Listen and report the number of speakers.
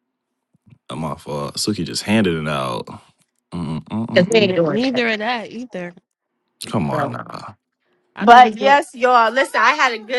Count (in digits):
3